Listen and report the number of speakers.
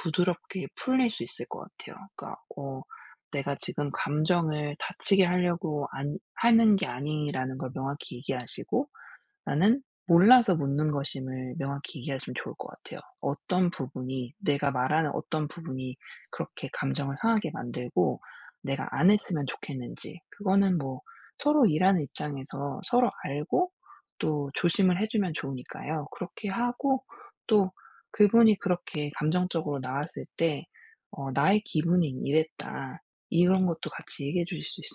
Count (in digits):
1